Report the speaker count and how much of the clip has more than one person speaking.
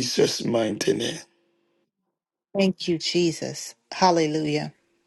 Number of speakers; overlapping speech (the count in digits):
2, no overlap